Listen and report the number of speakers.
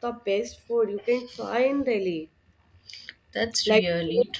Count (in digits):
2